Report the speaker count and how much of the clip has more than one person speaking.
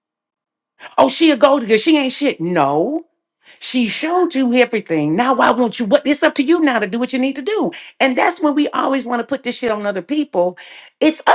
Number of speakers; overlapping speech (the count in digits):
1, no overlap